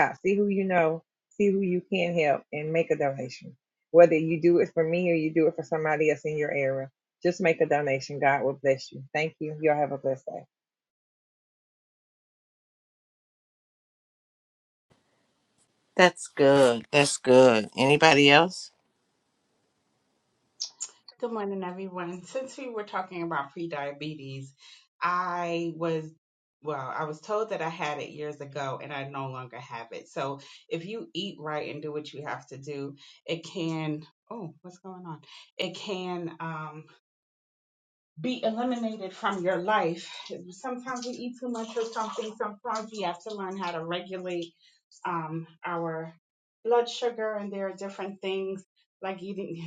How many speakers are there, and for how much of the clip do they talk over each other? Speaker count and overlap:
3, no overlap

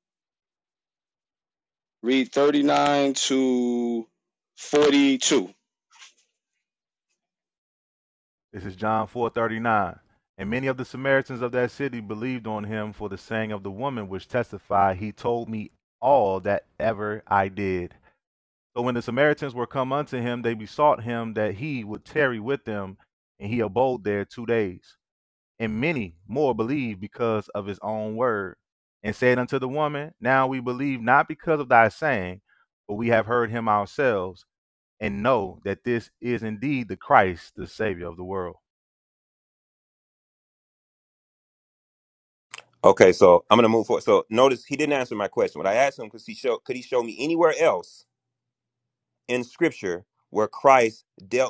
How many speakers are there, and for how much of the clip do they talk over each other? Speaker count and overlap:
3, no overlap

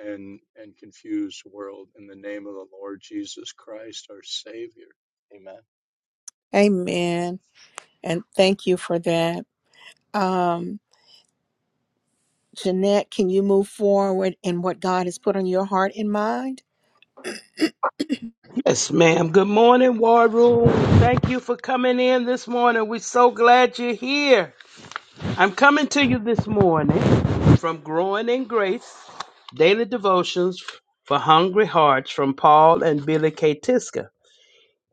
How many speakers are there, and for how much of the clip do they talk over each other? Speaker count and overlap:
3, no overlap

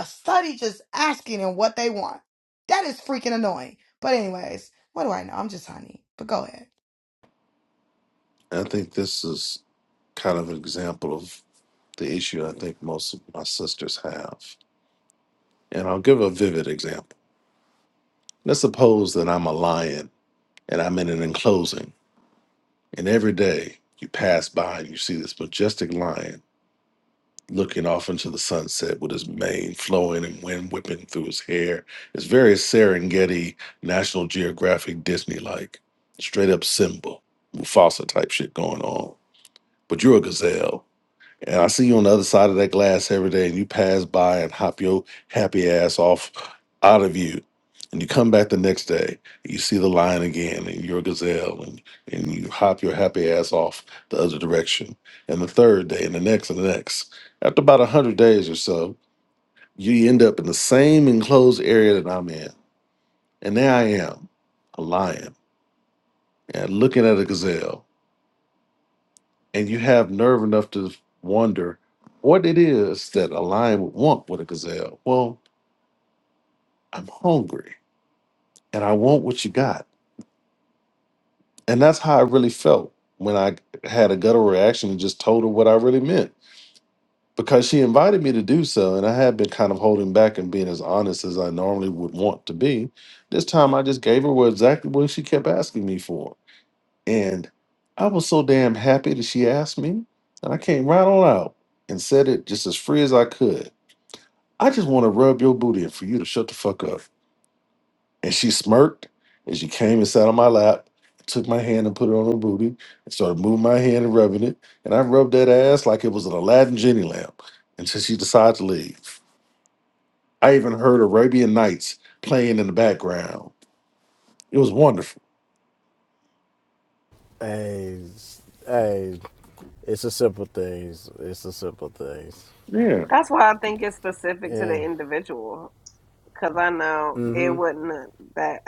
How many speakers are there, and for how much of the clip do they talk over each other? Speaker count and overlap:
4, under 1%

